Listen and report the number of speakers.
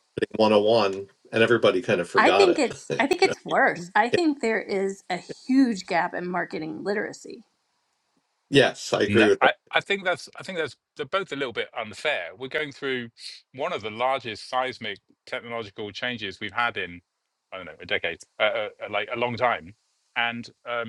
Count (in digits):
3